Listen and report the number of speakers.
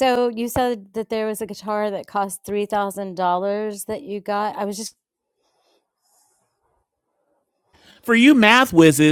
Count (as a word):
two